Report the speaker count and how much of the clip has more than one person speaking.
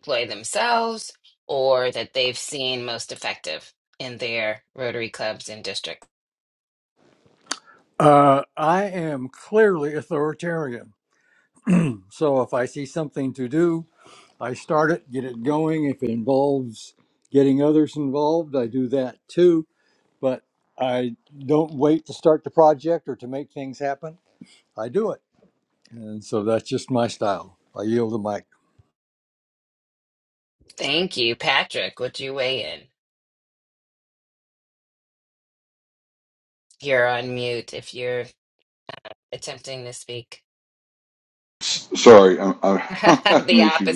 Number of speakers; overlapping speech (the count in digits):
3, about 1%